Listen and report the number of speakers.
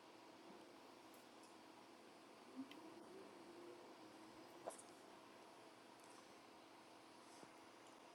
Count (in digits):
0